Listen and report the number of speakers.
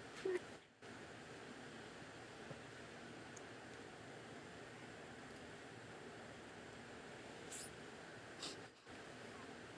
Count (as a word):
zero